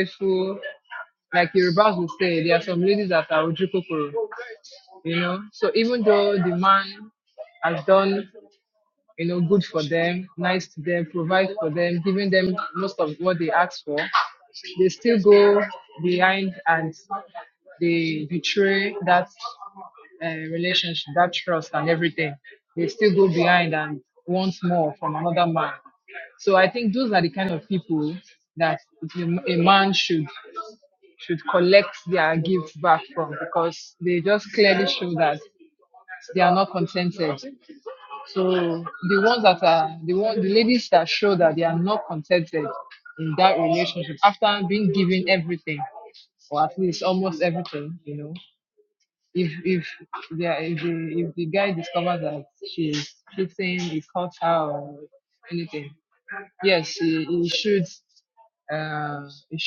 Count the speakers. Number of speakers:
1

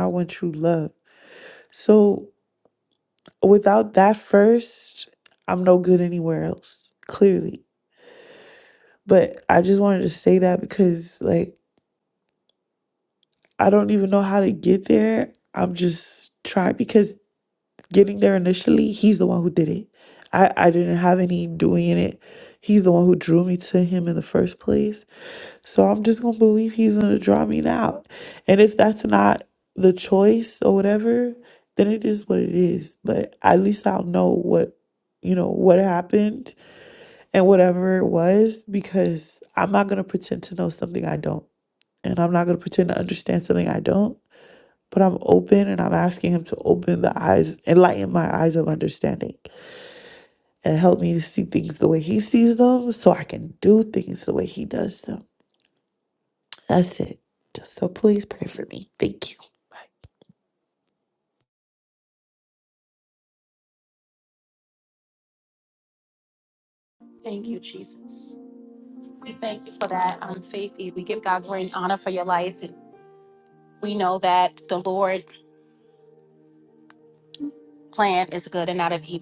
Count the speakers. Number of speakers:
2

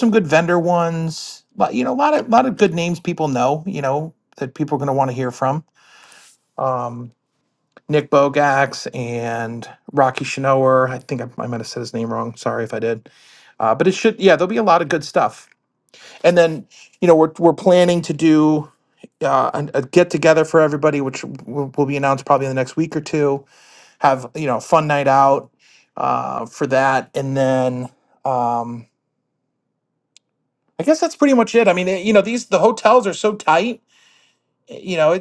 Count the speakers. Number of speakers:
1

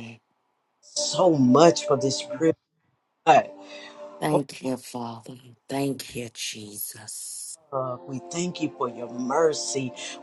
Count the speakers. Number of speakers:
2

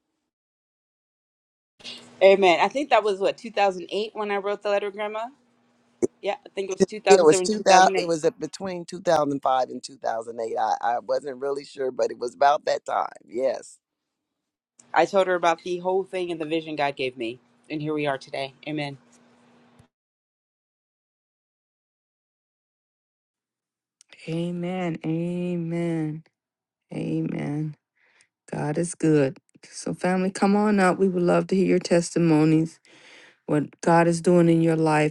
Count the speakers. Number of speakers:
3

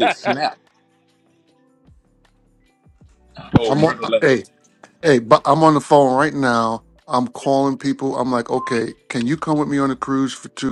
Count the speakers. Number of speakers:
2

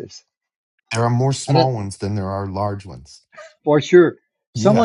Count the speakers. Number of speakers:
2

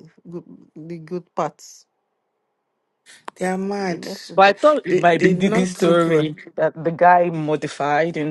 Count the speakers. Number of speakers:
3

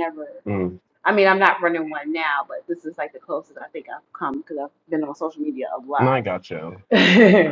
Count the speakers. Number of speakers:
2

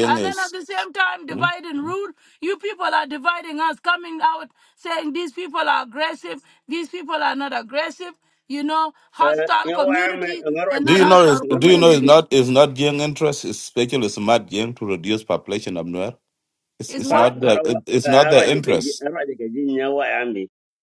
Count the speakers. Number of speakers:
3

